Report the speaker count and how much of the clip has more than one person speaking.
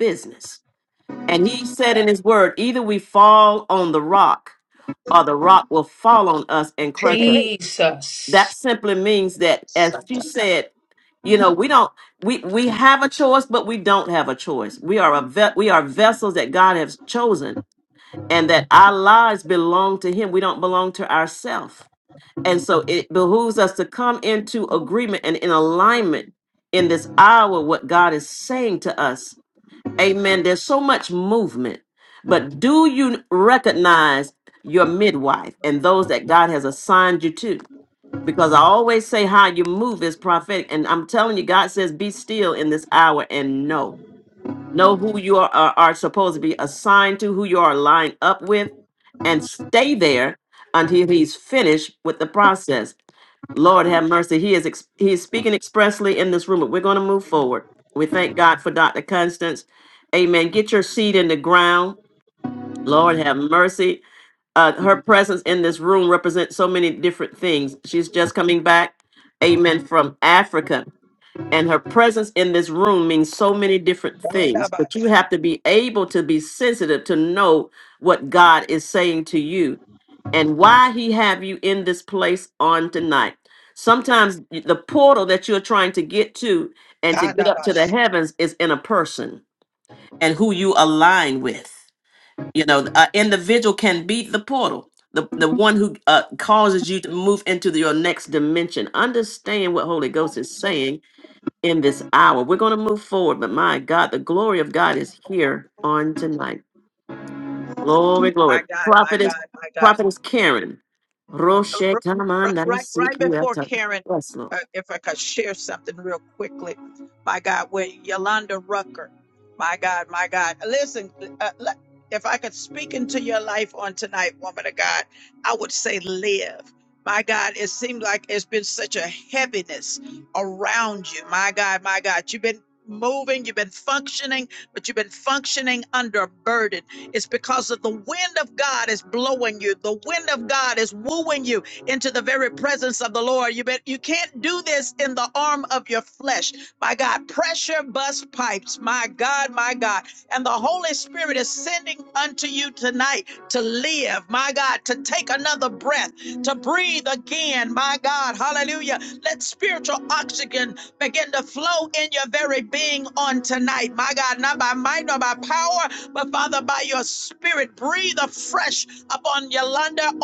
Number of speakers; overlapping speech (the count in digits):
3, about 3%